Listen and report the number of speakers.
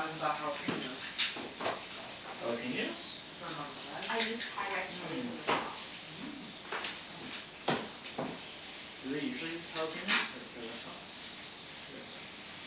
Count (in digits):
3